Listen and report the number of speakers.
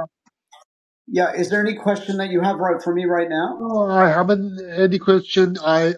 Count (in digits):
2